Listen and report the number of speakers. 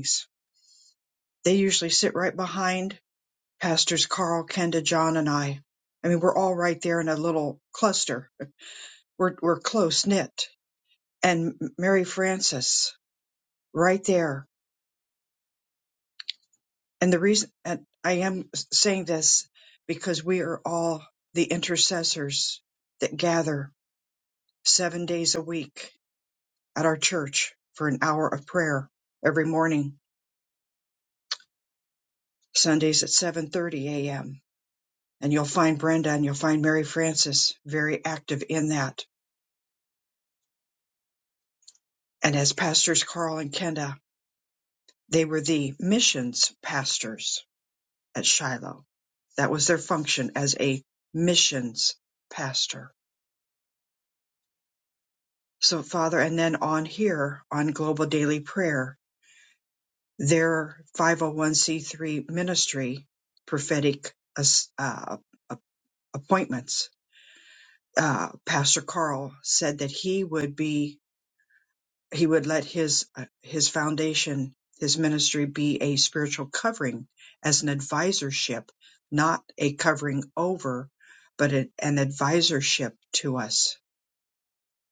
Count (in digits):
1